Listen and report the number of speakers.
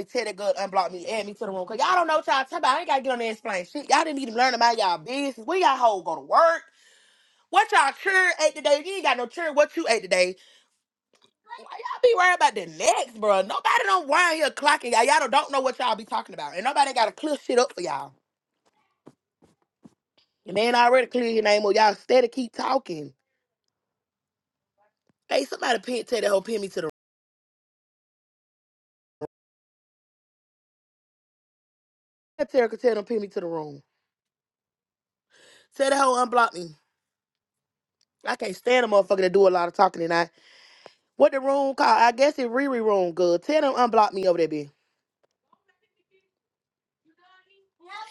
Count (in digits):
1